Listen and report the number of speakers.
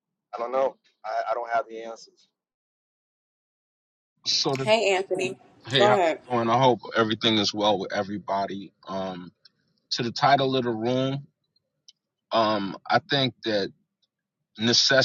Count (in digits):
3